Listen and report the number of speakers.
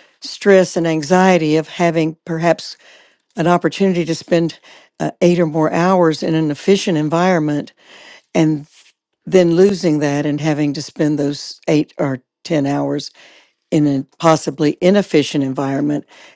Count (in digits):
1